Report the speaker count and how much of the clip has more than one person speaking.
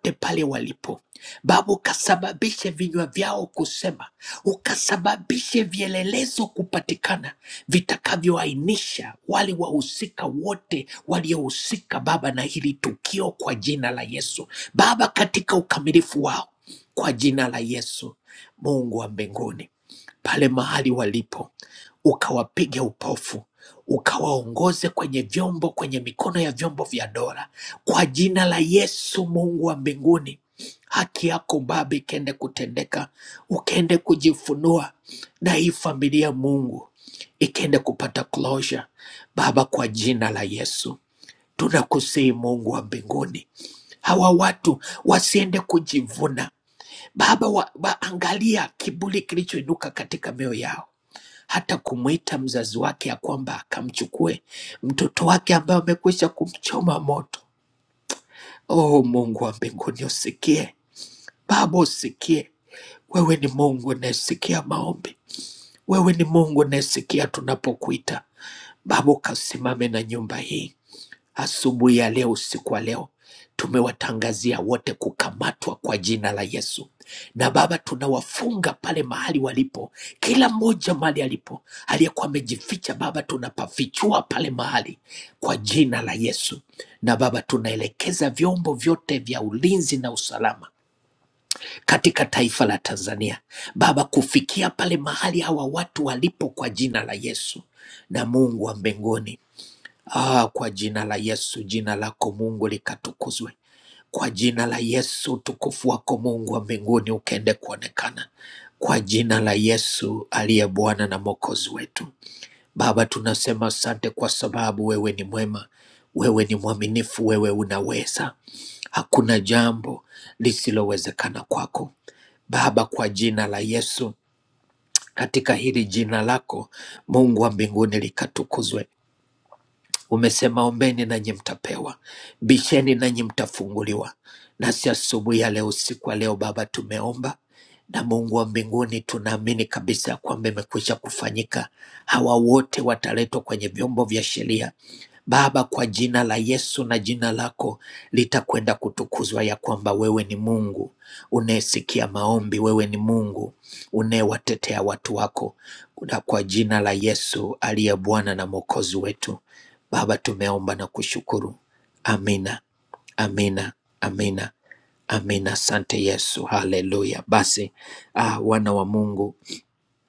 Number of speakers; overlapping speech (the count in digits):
1, no overlap